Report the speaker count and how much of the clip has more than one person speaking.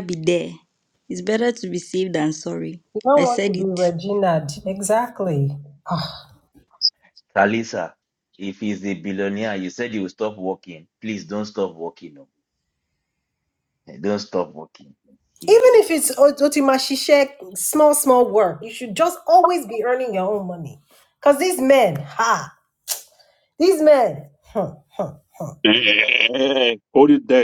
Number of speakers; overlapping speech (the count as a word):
four, about 3%